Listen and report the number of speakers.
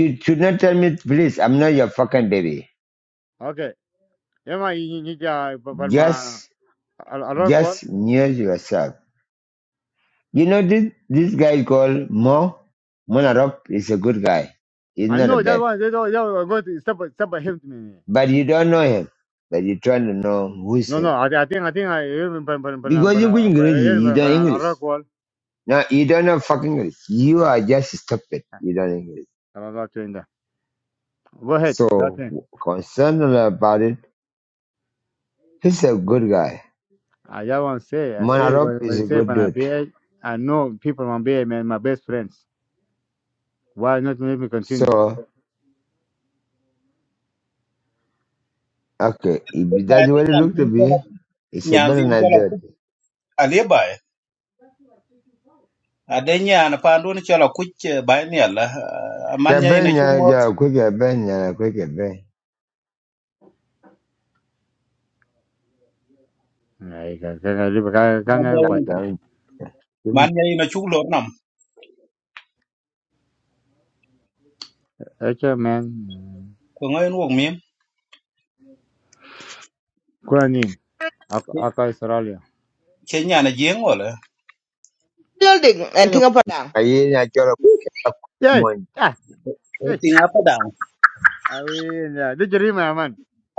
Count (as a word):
four